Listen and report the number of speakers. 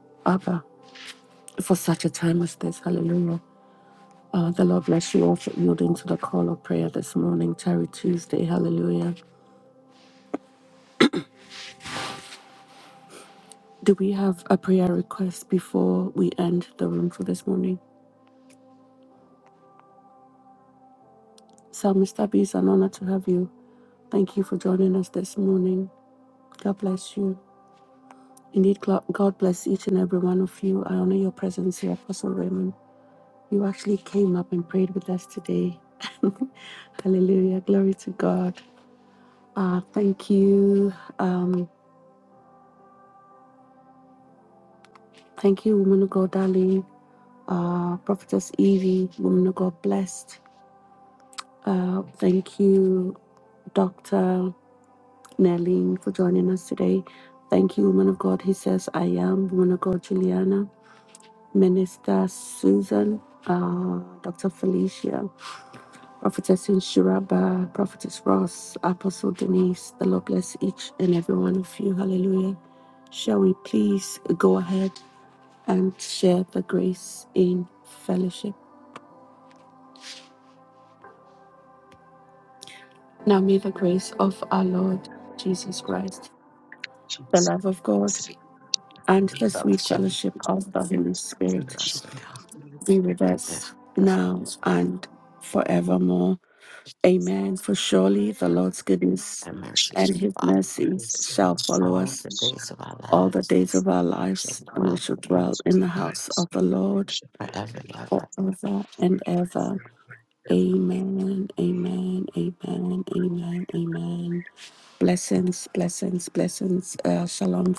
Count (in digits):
3